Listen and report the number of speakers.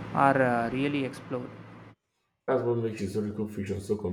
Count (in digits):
2